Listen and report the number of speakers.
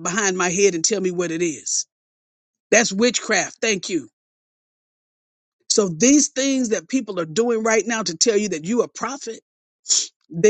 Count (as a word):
one